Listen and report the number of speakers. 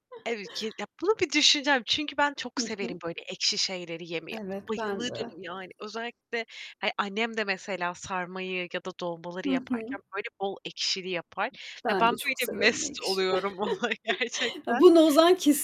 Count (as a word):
two